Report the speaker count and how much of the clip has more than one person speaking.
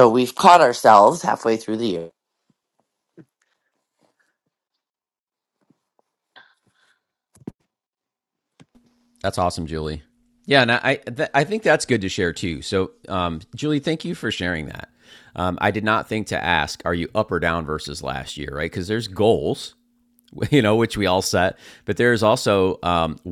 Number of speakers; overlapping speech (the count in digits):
2, no overlap